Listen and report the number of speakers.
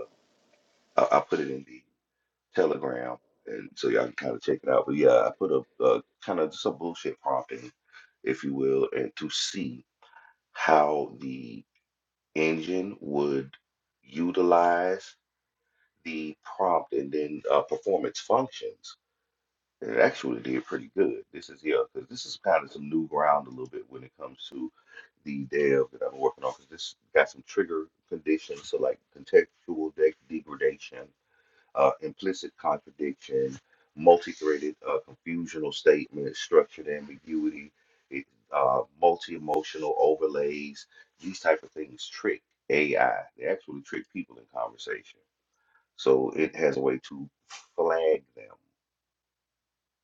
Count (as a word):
one